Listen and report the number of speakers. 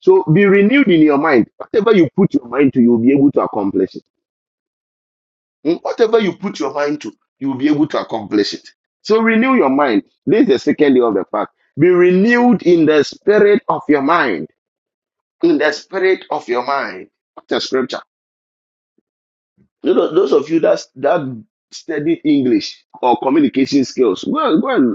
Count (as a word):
one